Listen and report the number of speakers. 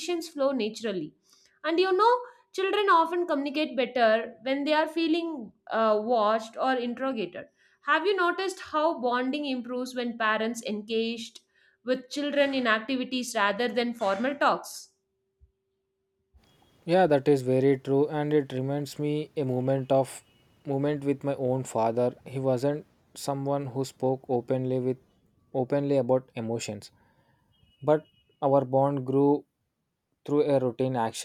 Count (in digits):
2